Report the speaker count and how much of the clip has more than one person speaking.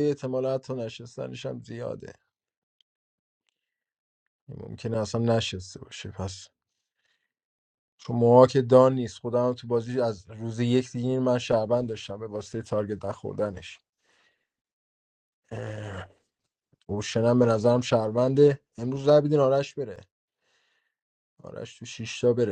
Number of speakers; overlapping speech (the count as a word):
one, no overlap